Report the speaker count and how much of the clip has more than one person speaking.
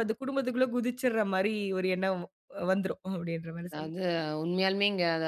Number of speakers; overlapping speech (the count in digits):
2, about 3%